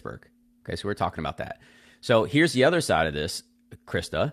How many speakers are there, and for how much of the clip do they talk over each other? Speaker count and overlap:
1, no overlap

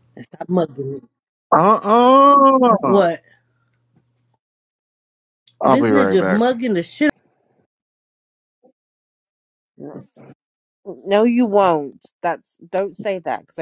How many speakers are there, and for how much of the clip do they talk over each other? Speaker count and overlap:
3, about 7%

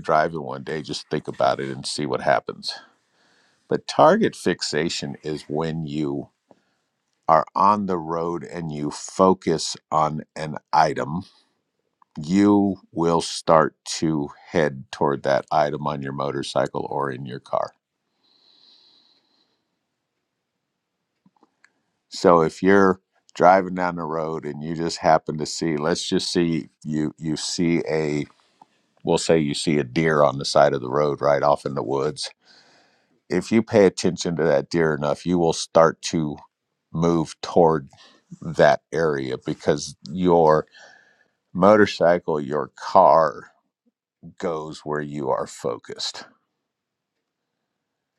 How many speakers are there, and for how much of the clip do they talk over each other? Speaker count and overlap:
1, no overlap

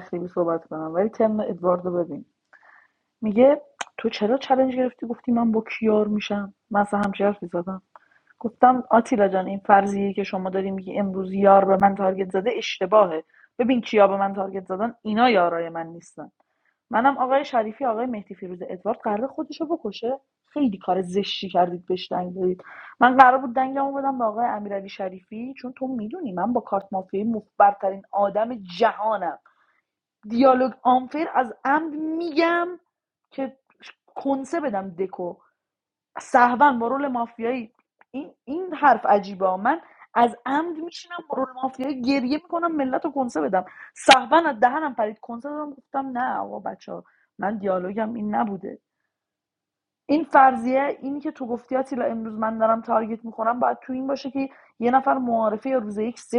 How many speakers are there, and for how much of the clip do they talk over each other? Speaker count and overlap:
1, no overlap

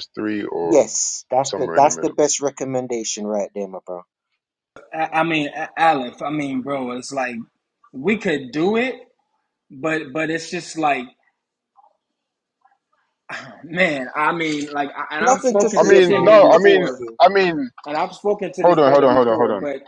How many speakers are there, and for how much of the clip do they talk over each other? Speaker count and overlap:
3, about 19%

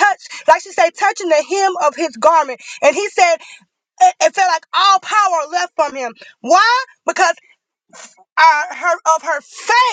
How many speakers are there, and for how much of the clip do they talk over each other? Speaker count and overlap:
1, no overlap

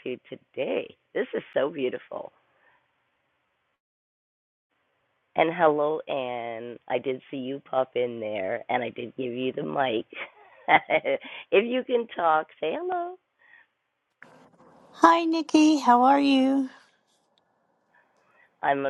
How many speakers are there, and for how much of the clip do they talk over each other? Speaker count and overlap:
2, no overlap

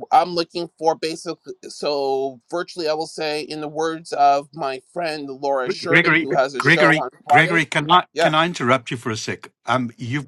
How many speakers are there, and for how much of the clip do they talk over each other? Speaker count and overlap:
2, about 21%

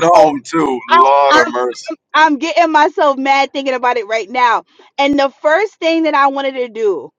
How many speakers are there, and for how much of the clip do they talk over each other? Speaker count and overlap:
2, about 13%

